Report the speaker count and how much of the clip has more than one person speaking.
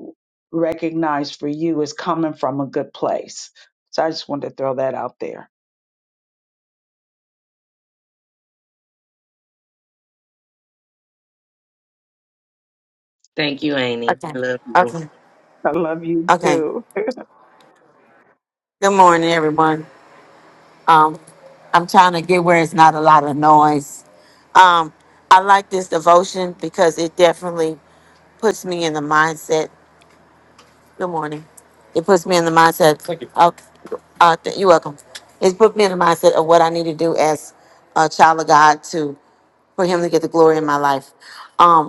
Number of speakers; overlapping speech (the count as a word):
three, about 2%